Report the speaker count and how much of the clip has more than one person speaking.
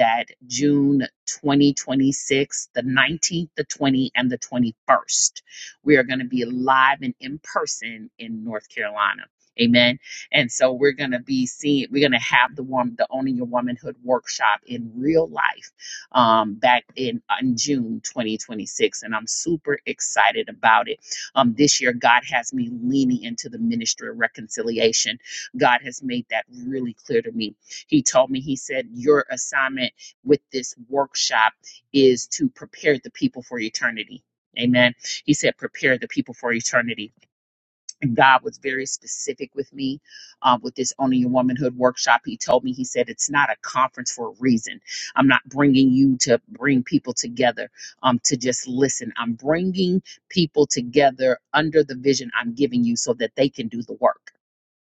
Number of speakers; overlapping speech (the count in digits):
1, no overlap